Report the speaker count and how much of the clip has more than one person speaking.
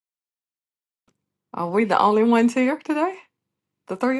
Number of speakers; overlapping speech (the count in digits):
1, no overlap